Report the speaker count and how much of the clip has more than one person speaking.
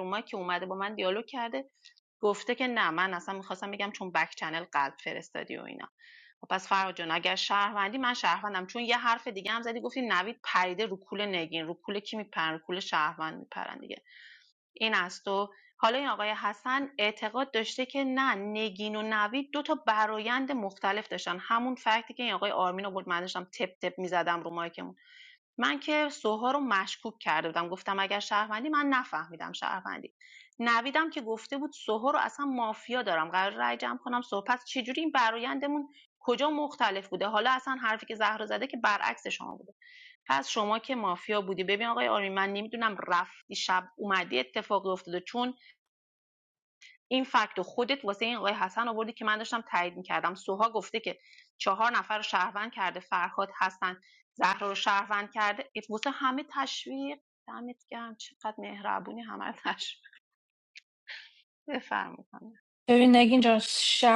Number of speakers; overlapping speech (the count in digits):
2, no overlap